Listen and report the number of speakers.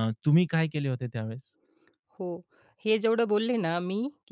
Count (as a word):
two